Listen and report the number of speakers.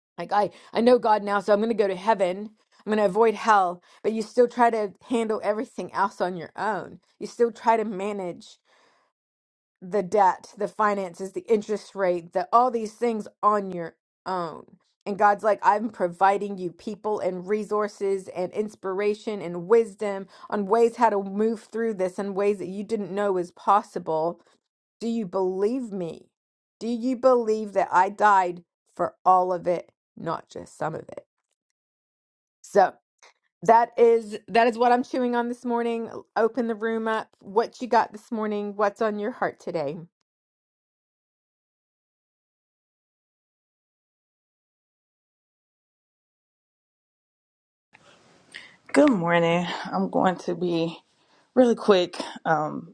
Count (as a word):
two